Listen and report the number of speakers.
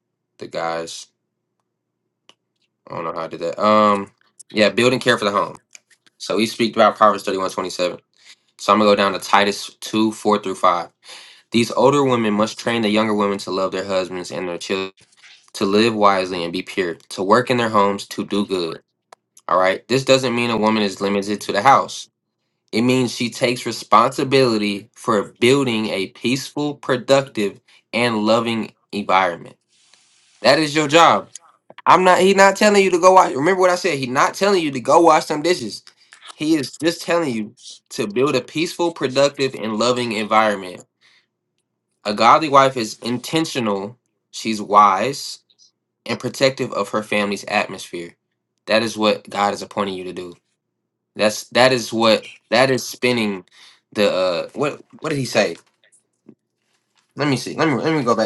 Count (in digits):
1